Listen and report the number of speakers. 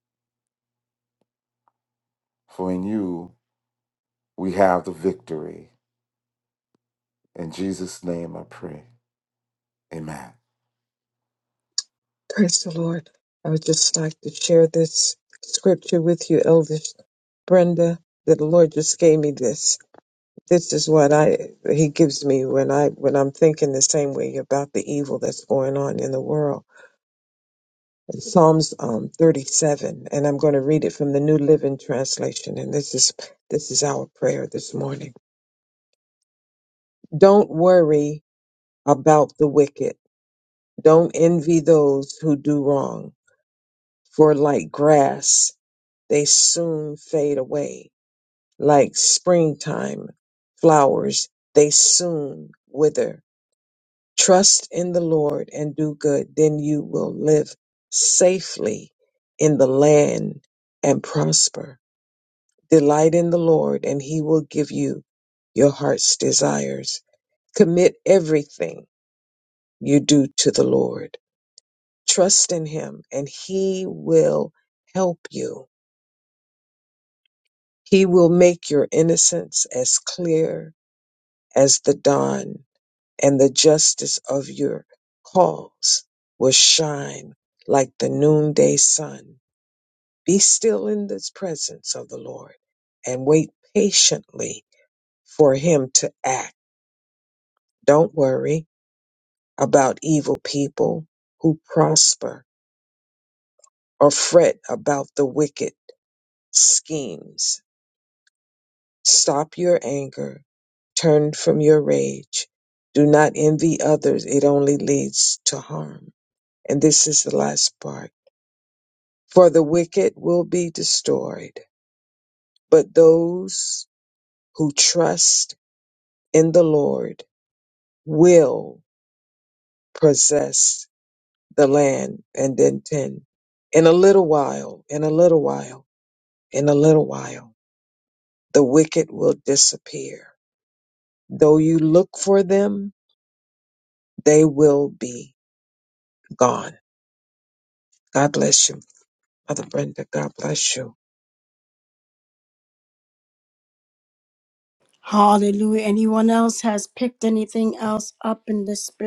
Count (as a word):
three